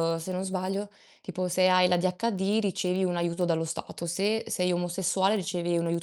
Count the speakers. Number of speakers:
1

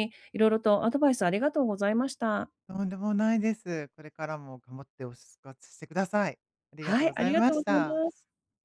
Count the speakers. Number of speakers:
2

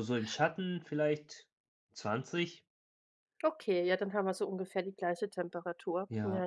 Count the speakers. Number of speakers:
2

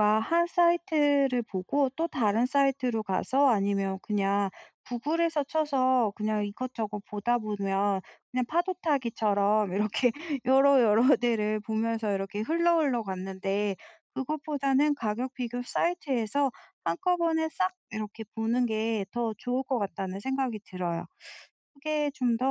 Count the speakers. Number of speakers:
1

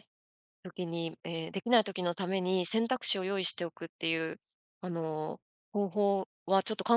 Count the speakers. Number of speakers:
1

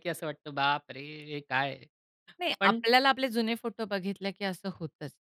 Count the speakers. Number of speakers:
2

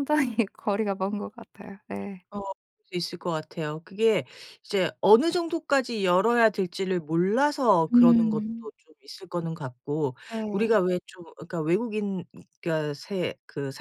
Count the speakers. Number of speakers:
2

